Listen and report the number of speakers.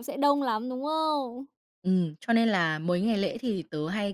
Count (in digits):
2